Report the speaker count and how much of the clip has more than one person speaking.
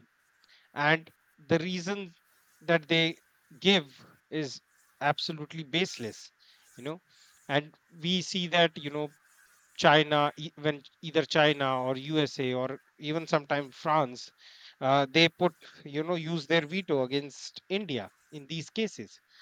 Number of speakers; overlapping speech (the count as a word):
one, no overlap